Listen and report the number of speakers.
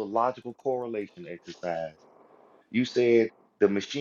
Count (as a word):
one